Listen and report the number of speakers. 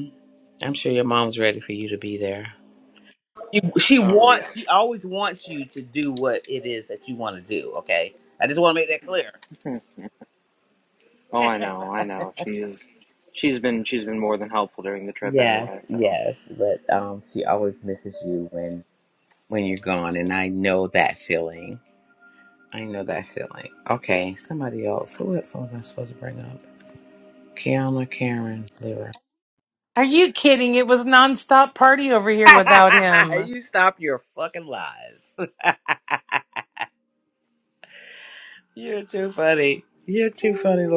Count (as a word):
three